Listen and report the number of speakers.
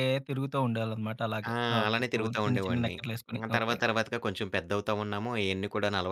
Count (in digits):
2